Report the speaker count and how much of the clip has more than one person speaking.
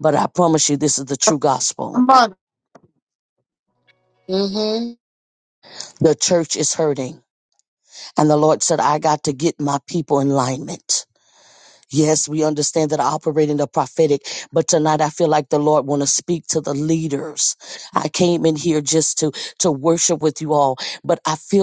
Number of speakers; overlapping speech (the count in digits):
2, under 1%